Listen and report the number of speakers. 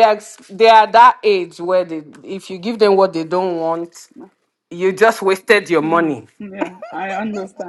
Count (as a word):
two